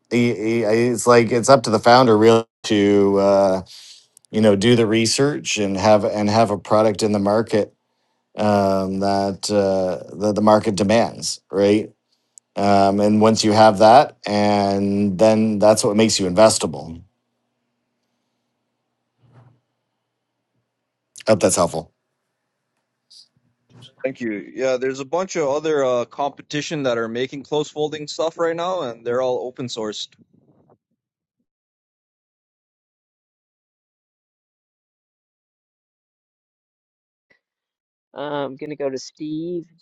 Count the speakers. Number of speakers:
three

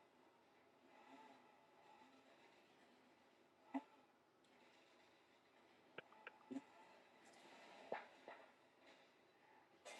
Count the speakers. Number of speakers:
zero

